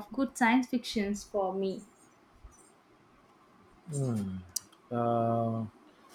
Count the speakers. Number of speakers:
2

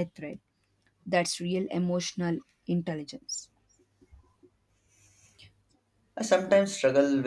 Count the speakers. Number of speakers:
2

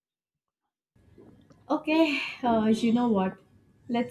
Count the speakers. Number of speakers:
1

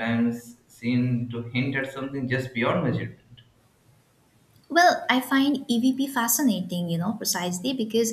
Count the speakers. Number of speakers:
2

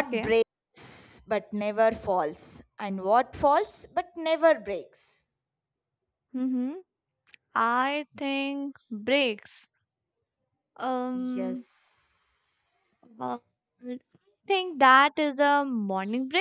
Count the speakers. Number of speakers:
2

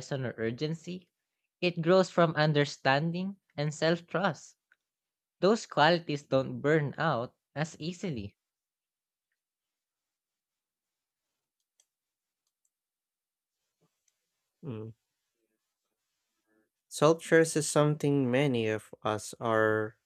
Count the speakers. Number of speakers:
2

